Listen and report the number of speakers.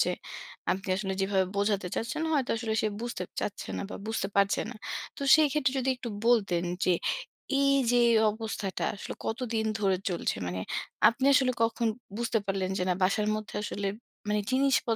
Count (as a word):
one